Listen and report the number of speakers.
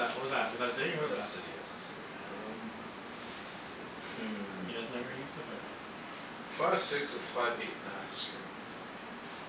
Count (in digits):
2